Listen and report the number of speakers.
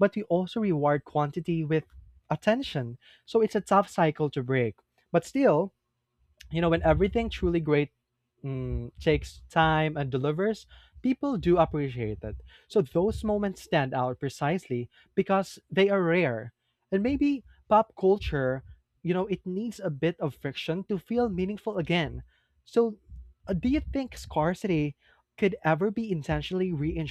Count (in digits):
1